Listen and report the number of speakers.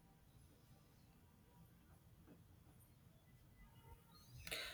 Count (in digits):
0